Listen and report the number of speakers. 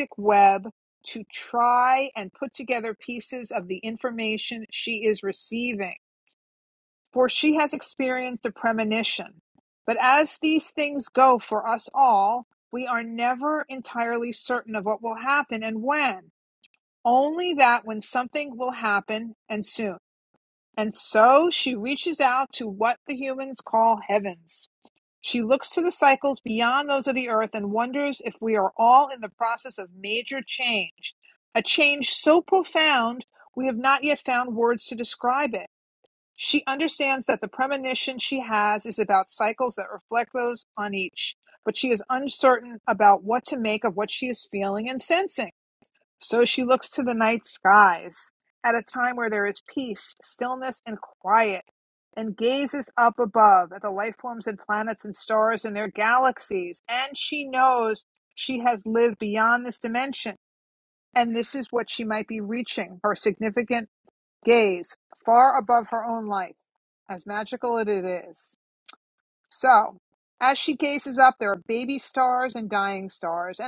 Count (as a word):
one